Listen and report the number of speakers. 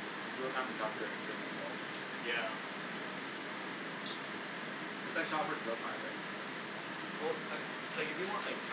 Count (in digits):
2